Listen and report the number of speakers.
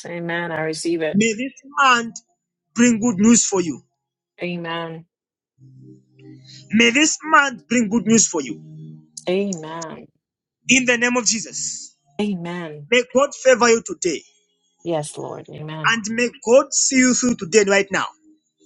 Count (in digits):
2